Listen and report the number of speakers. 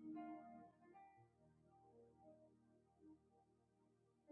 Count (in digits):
0